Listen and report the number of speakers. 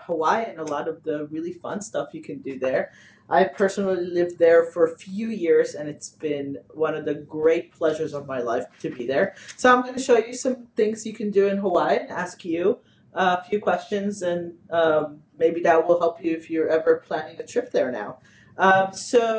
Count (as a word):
one